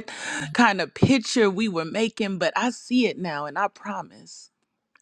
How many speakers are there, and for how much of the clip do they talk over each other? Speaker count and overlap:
1, no overlap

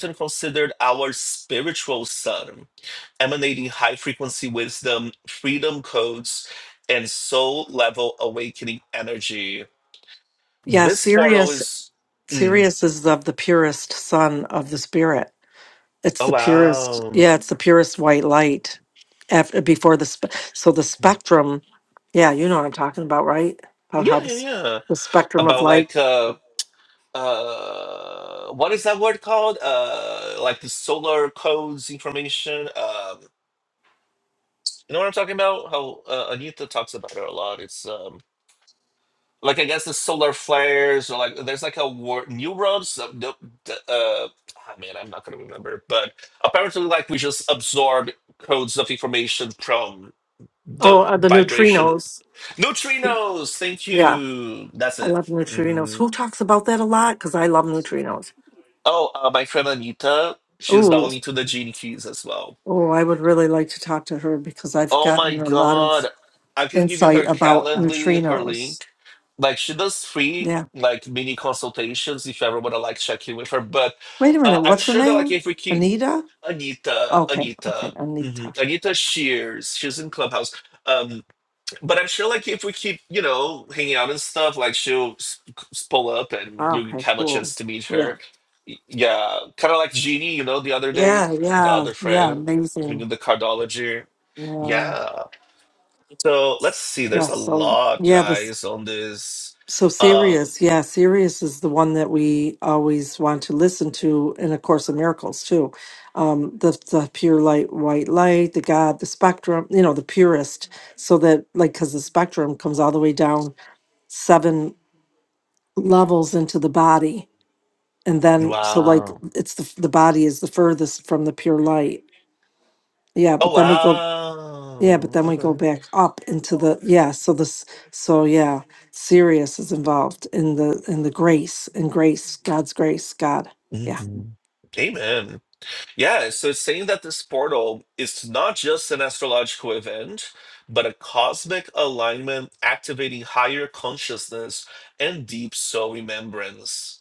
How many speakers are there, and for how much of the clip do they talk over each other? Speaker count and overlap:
2, about 12%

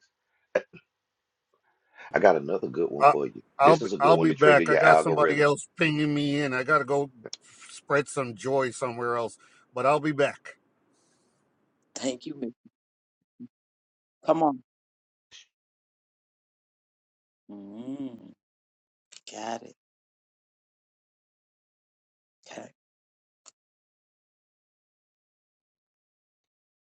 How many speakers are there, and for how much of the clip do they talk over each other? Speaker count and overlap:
3, about 8%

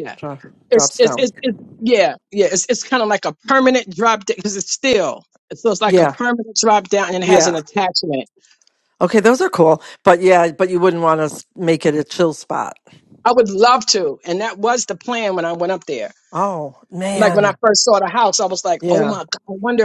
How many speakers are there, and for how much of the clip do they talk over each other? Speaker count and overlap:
2, about 10%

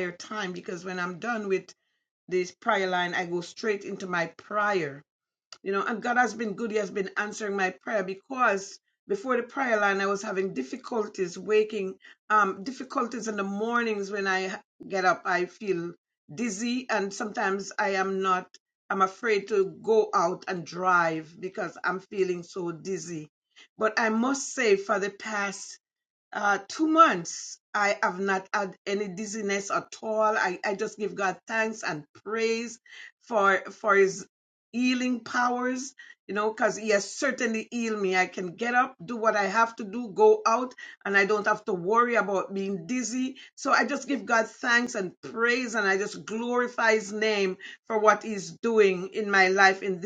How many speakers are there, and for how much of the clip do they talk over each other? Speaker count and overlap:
1, no overlap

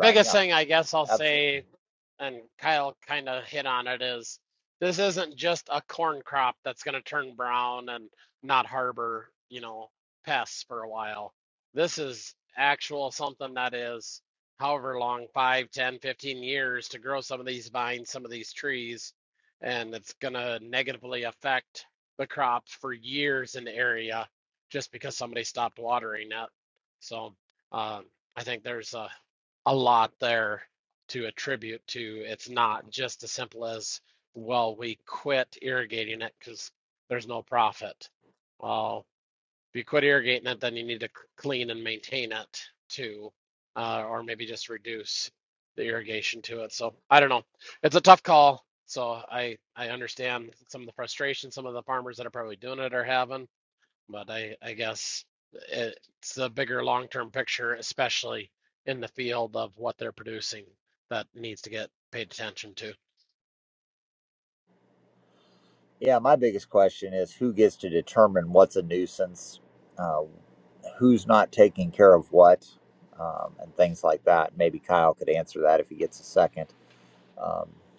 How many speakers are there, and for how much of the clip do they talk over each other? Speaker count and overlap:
2, about 1%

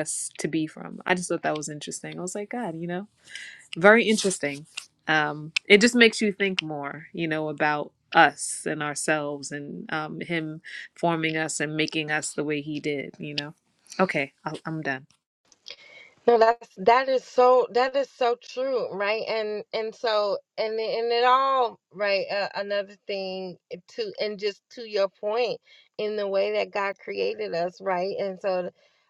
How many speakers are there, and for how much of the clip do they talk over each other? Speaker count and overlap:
2, no overlap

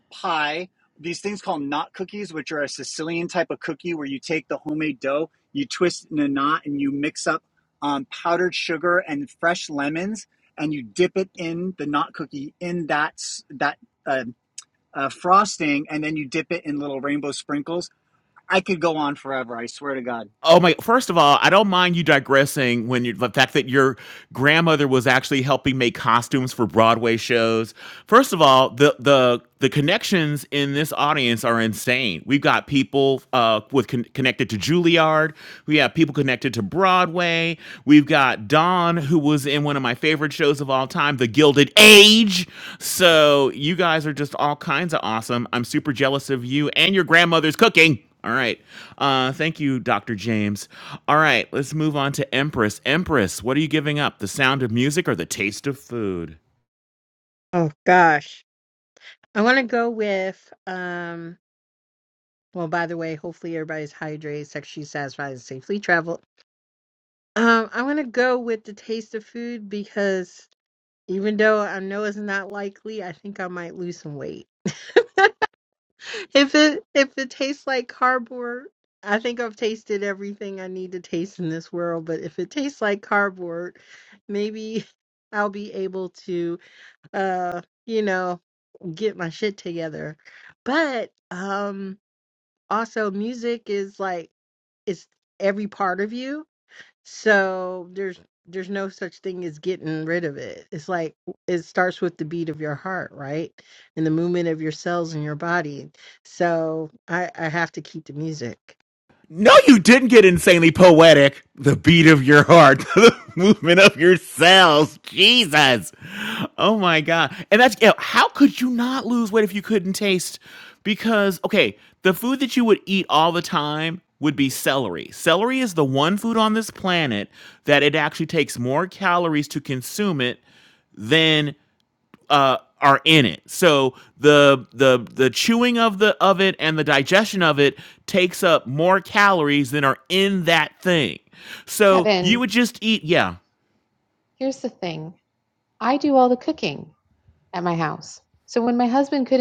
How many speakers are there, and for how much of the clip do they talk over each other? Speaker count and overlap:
4, under 1%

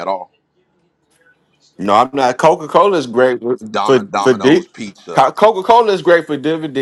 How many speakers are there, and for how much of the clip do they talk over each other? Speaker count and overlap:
2, about 15%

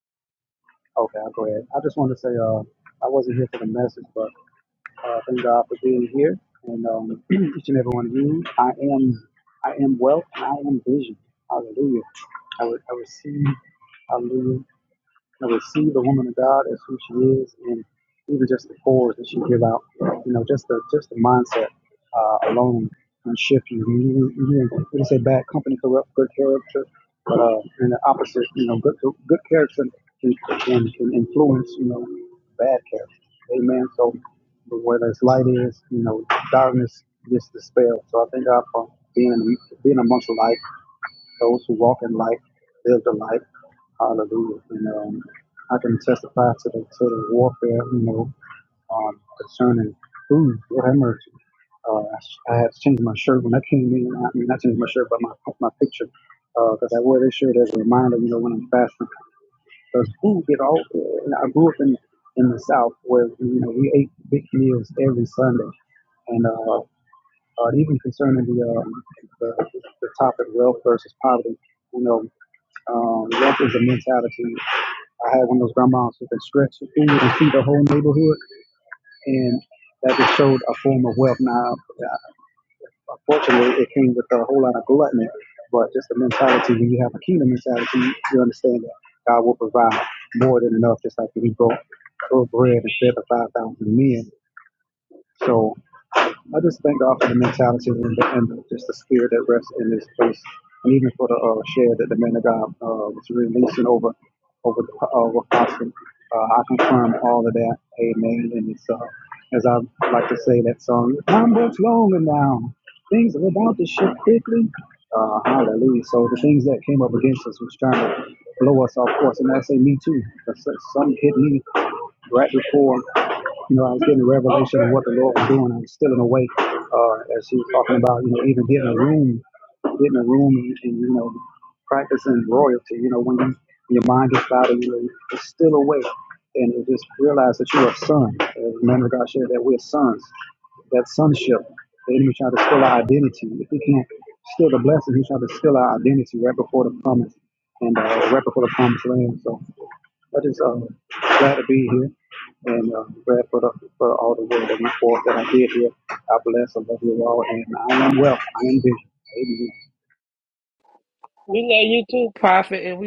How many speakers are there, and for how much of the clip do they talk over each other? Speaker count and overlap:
2, no overlap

